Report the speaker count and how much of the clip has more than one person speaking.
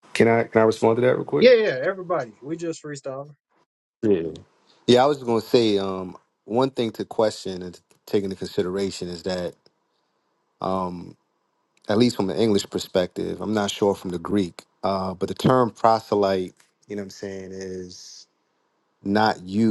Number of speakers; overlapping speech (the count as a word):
two, under 1%